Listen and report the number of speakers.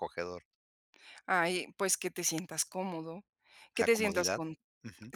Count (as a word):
two